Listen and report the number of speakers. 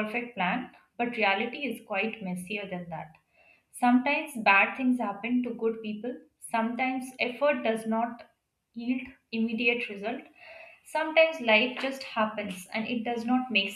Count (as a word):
one